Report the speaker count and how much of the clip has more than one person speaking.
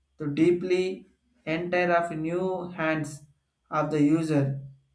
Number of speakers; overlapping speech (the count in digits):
1, no overlap